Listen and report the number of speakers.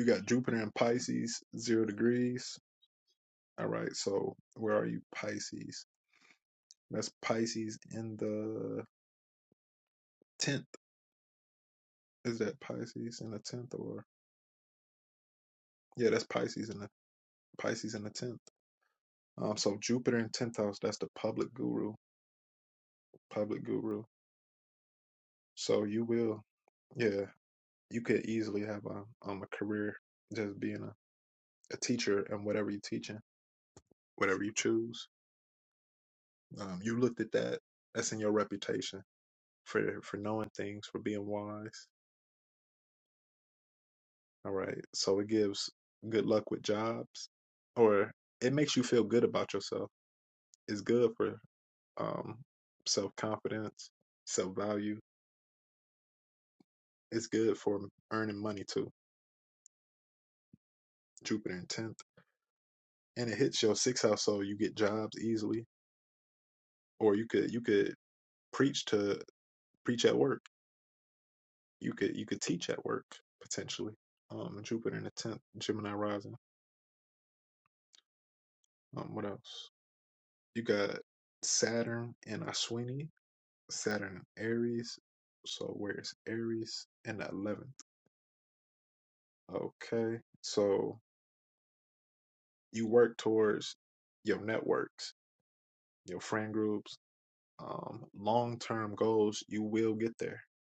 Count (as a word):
one